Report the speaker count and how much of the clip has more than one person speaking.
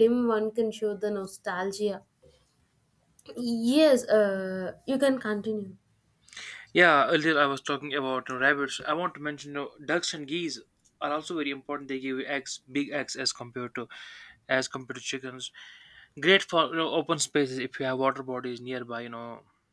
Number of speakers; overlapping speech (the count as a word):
two, no overlap